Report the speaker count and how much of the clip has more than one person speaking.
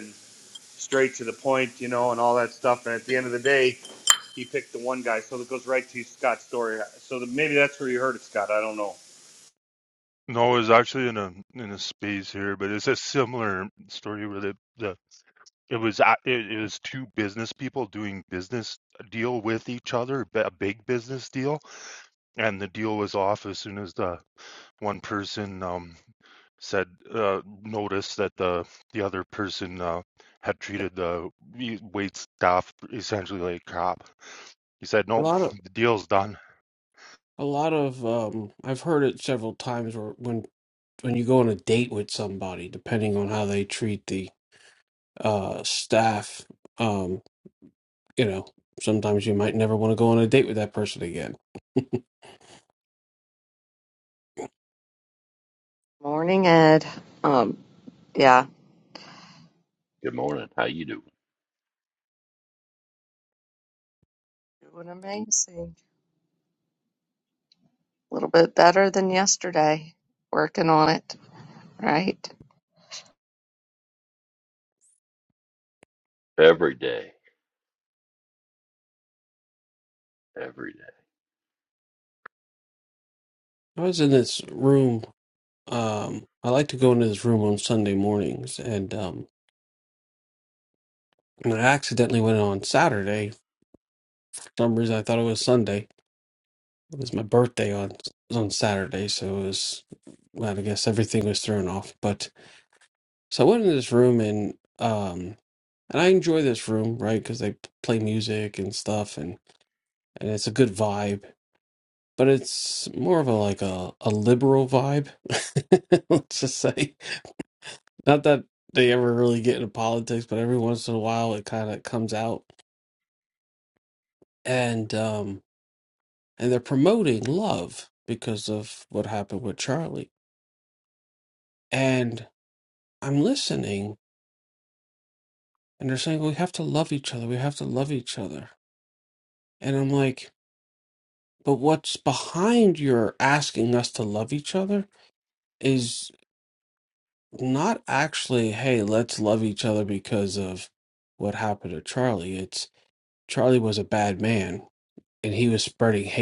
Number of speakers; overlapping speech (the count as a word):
five, under 1%